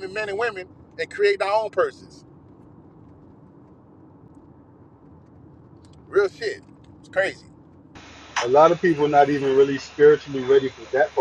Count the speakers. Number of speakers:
two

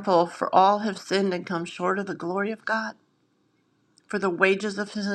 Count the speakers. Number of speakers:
one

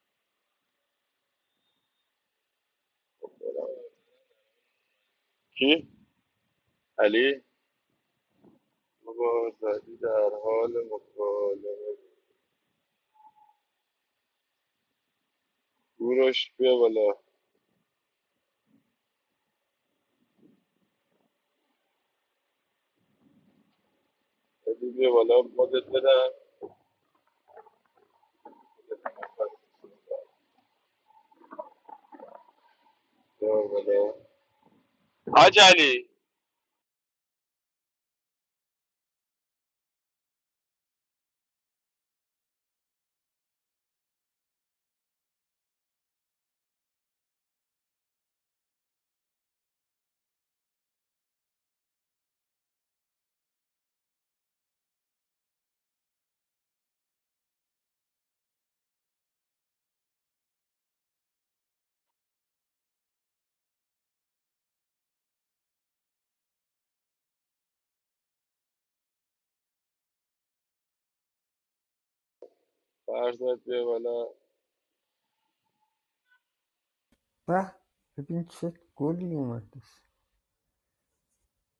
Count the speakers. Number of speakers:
two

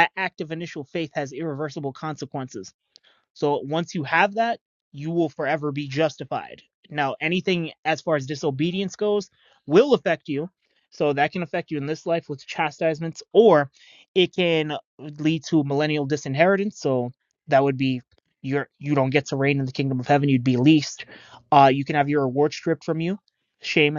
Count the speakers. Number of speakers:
one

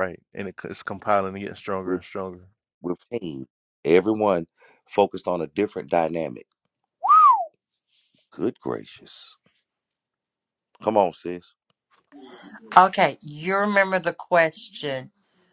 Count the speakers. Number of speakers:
three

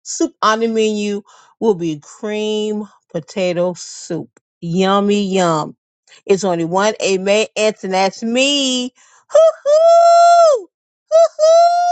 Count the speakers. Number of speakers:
one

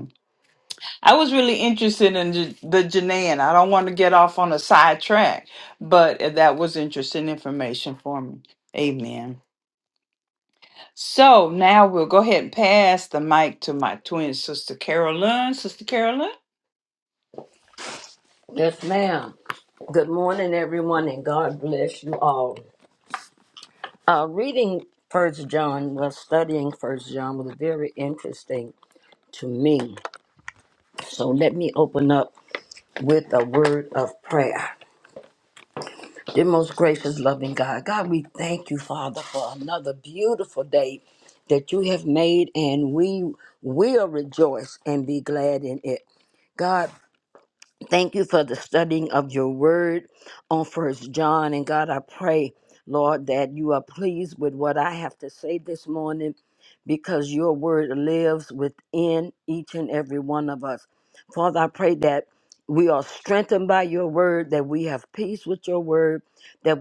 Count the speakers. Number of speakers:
two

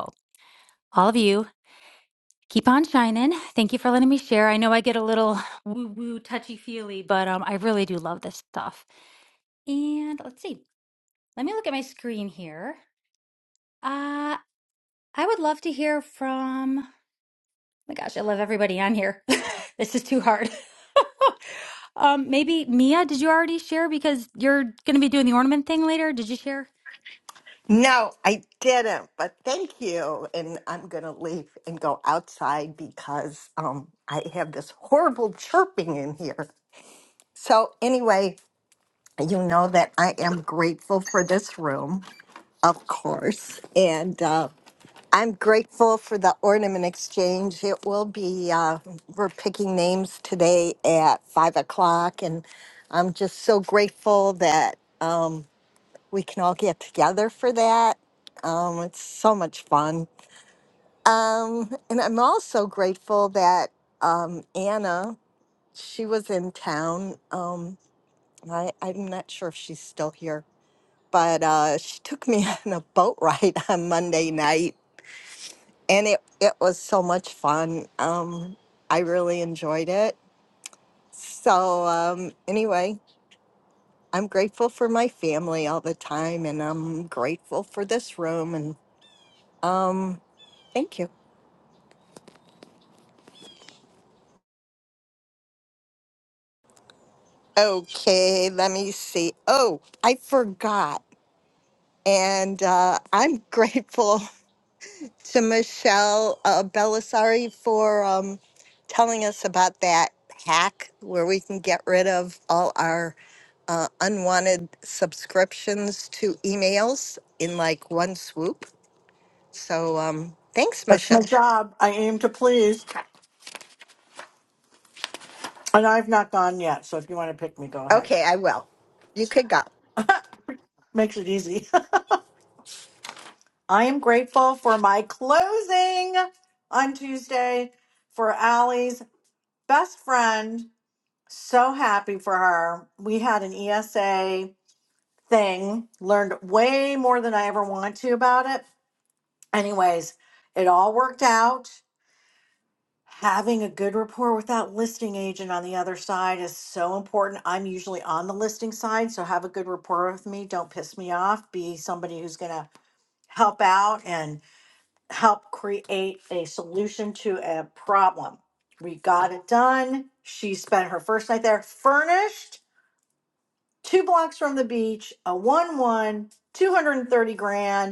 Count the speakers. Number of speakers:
three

